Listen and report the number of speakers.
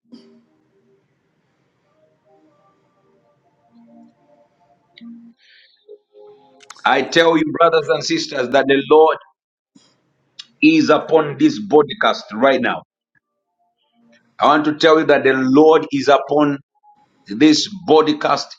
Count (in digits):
1